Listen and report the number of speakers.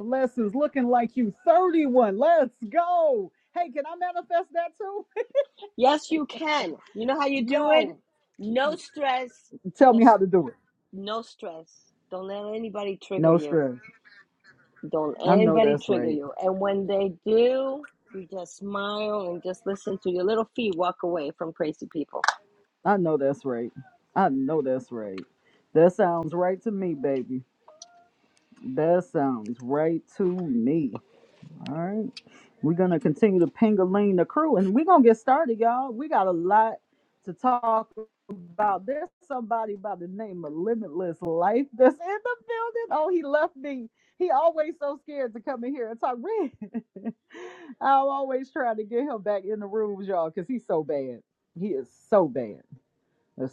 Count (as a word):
two